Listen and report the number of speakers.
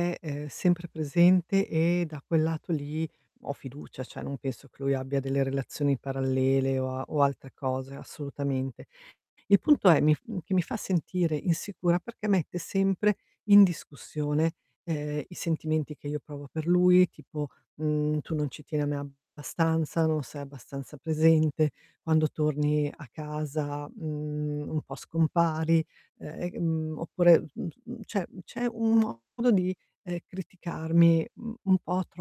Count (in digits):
1